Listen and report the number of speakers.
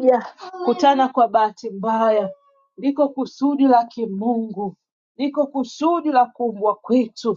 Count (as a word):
one